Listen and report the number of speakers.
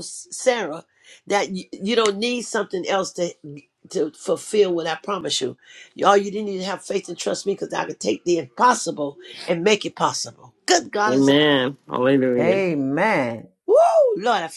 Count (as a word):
three